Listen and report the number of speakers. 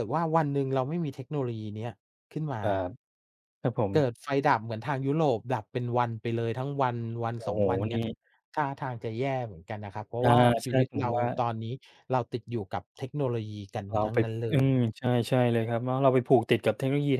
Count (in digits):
2